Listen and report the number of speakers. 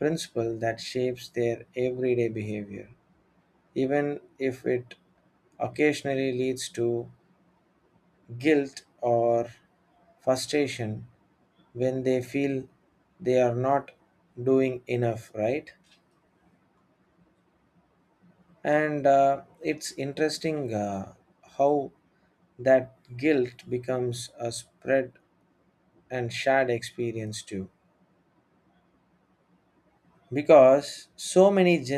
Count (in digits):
1